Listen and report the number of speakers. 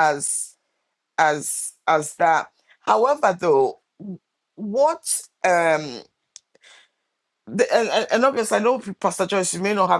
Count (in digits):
1